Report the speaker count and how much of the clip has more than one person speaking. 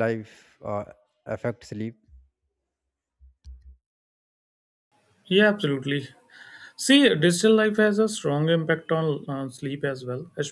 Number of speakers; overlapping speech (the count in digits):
2, no overlap